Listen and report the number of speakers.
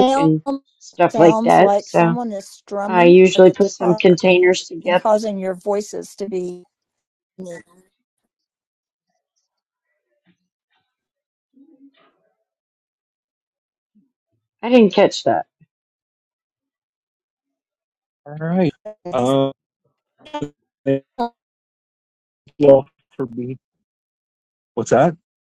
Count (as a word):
three